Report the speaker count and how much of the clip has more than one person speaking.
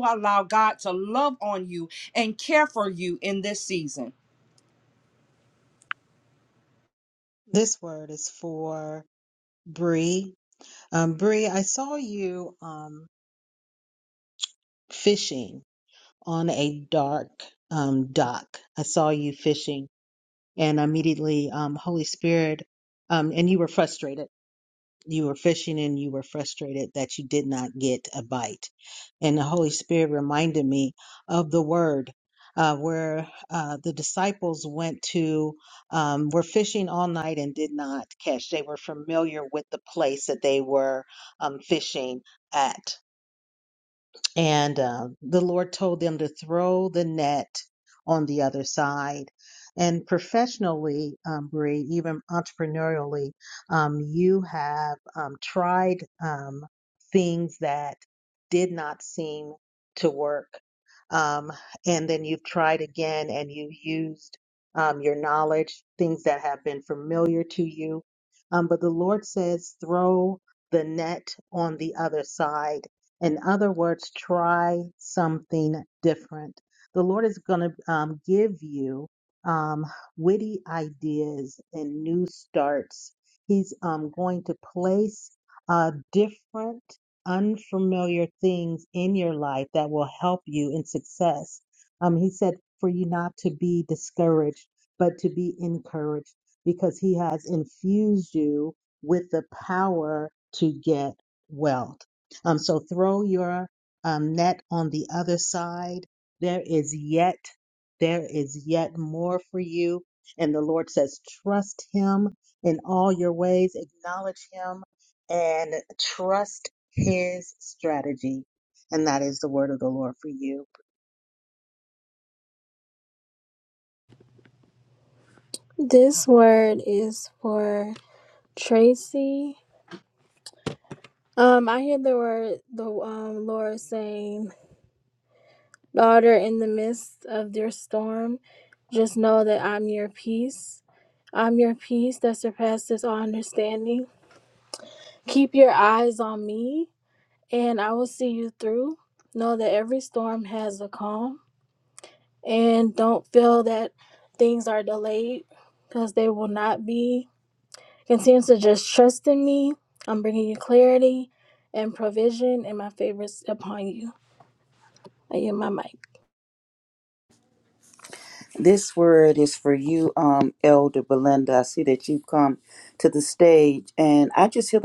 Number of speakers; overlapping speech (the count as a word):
four, no overlap